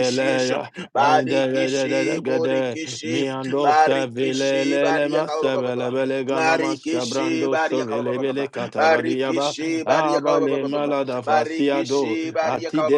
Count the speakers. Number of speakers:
two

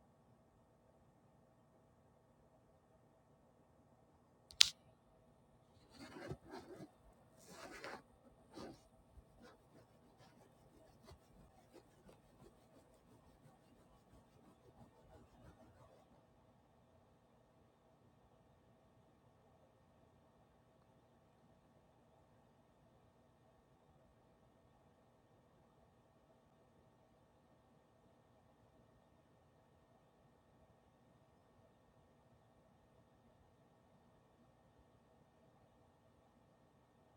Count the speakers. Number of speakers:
zero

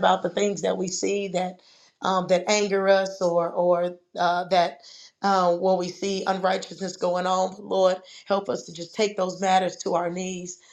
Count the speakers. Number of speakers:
one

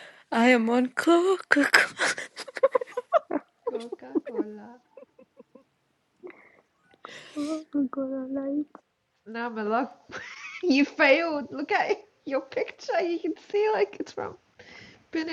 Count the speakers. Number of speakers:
three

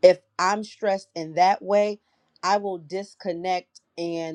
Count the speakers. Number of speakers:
one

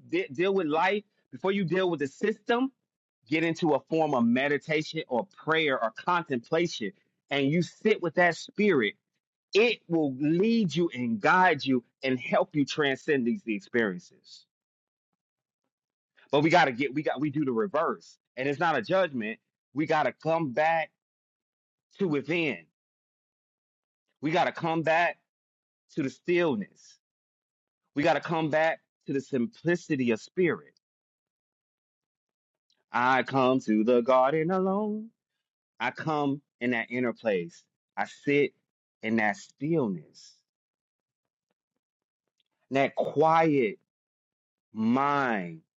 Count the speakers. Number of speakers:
one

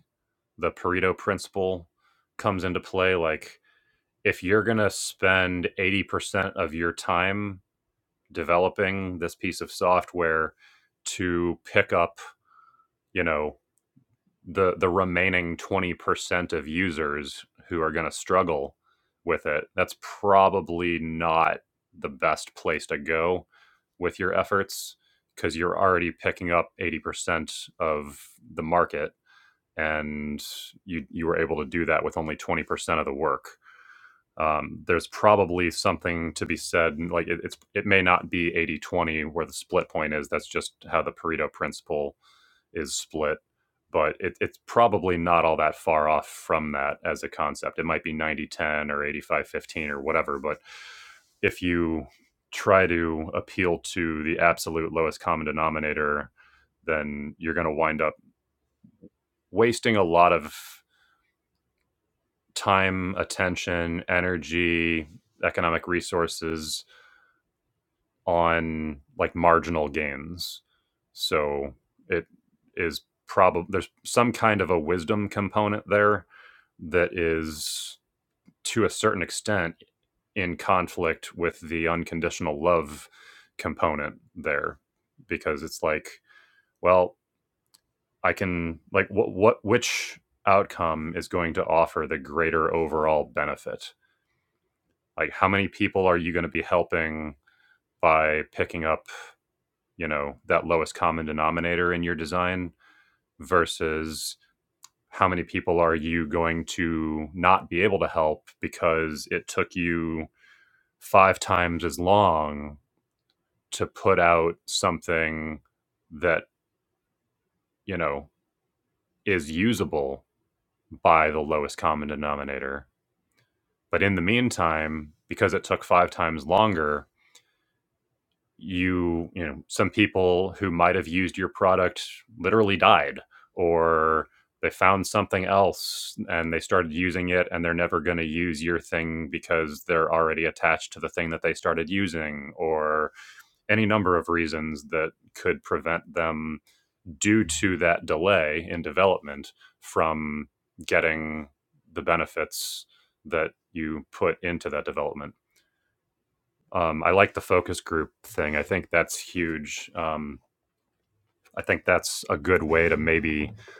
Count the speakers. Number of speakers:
one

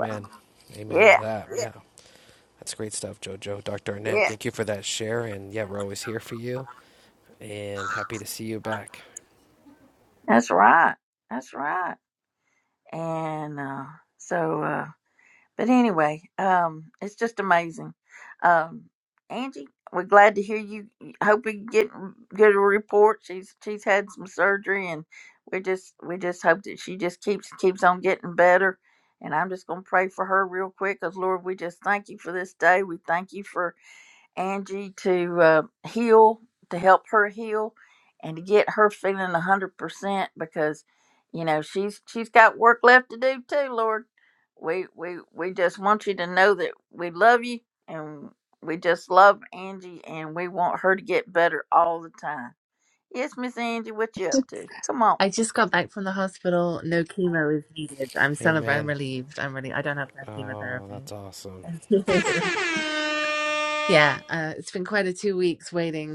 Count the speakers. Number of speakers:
three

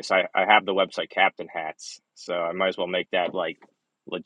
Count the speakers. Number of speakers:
one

